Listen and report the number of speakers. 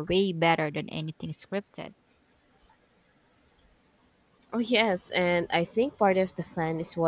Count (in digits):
2